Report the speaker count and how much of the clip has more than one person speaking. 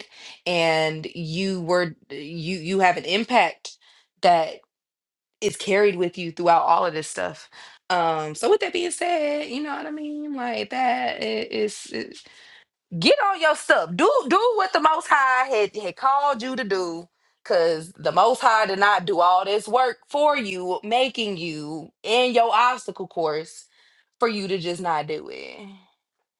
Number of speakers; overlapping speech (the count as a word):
one, no overlap